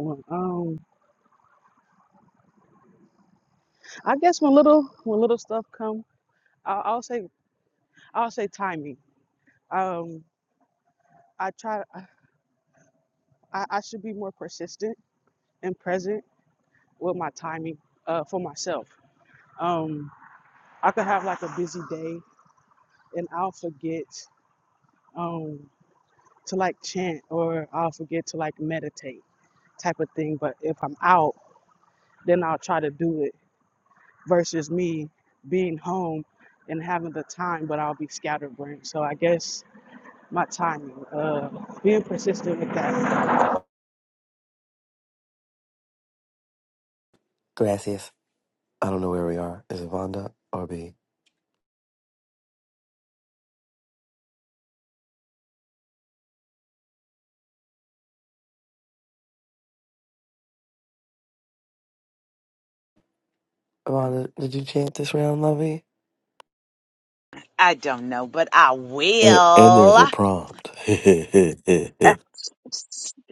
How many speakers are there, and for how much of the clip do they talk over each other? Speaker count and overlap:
three, about 1%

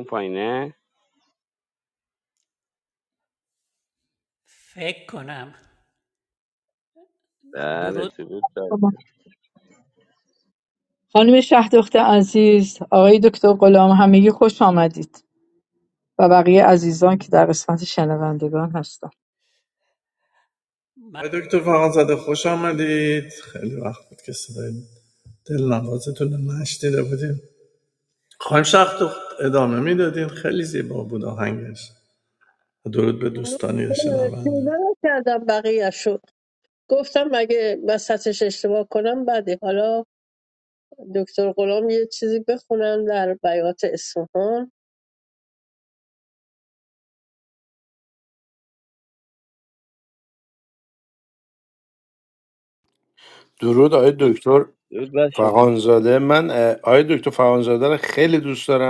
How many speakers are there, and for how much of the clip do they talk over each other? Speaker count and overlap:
six, about 2%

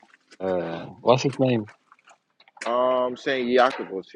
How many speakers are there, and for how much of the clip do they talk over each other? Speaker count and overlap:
two, no overlap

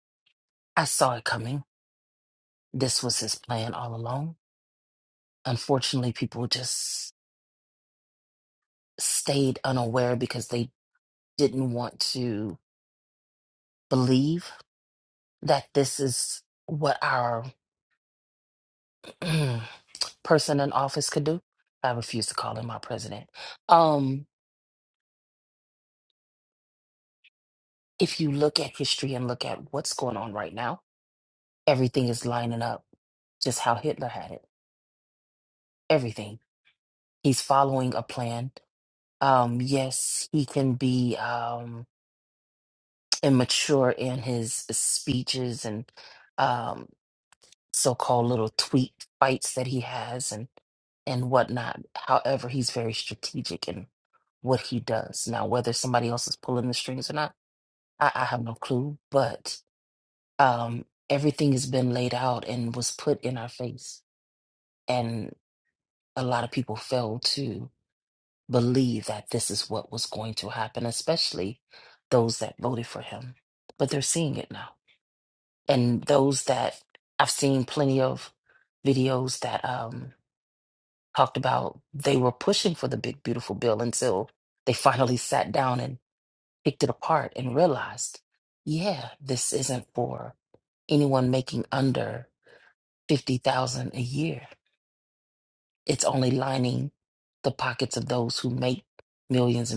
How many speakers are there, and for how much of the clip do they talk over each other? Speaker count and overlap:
one, no overlap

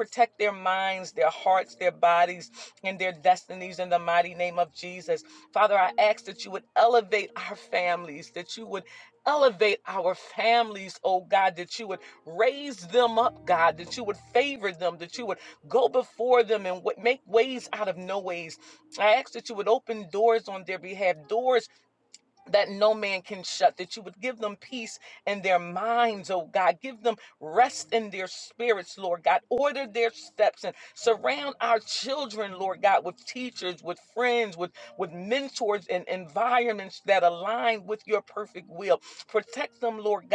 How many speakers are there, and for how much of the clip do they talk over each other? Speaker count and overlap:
one, no overlap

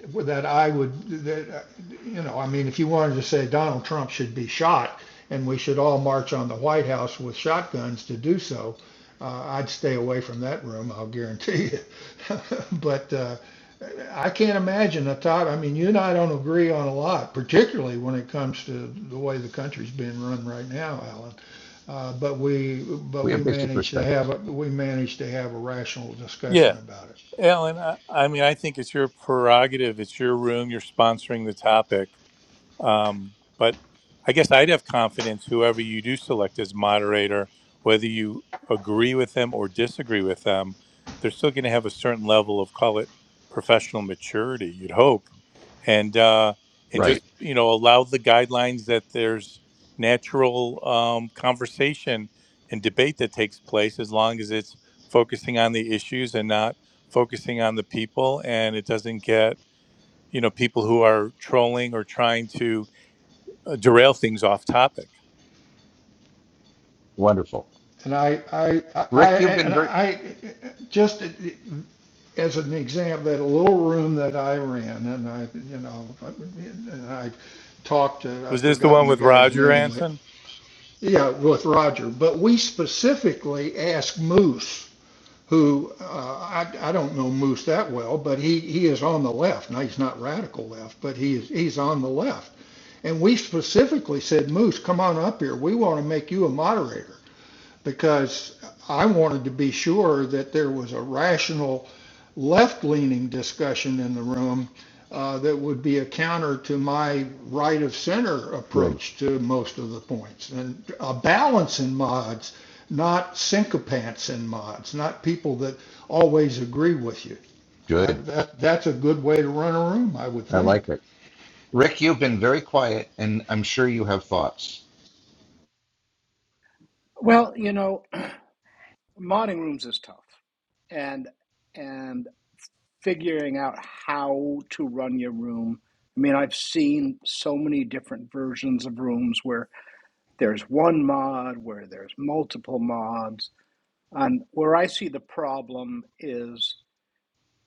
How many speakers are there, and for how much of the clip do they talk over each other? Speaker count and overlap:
four, about 3%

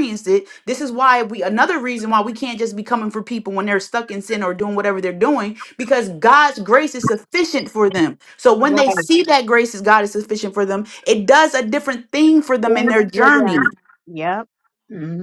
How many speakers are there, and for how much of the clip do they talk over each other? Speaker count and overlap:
two, about 8%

